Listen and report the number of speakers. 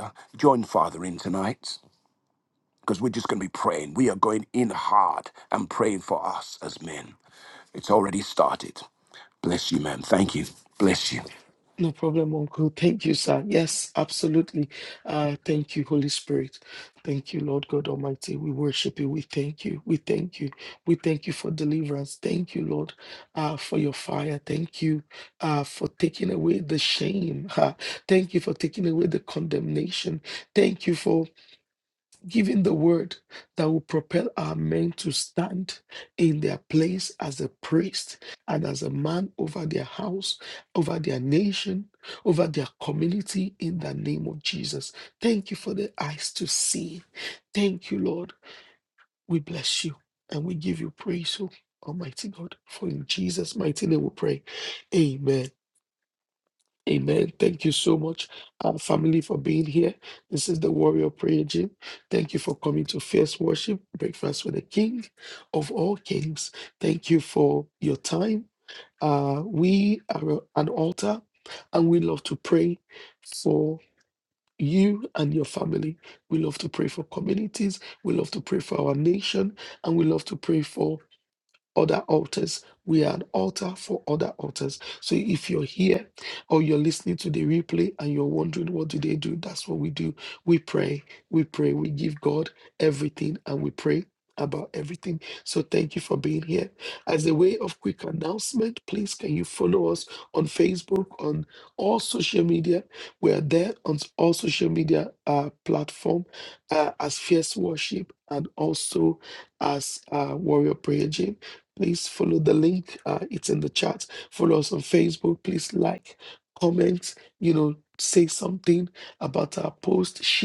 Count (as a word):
two